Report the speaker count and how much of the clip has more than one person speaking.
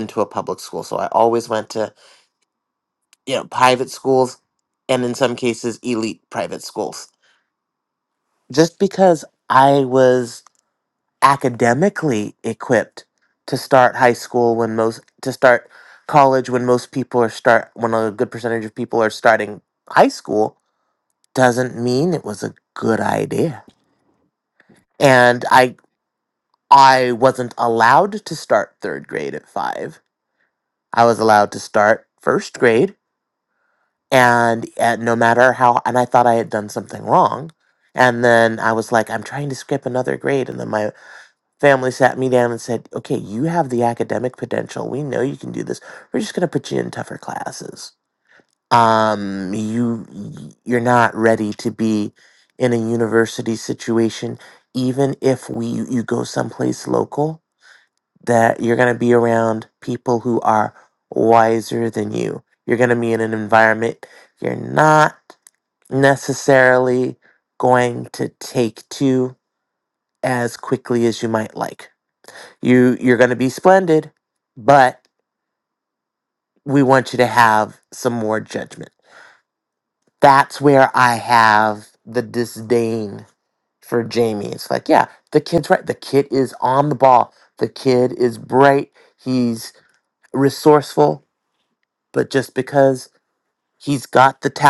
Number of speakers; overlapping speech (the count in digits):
1, no overlap